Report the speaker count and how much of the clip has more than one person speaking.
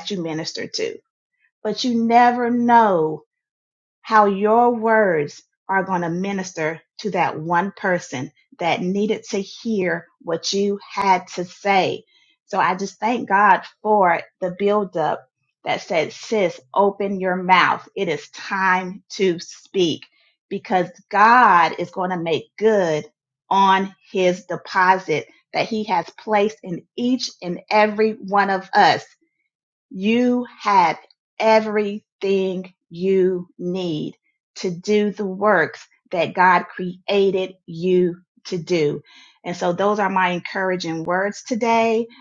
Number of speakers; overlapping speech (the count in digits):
1, no overlap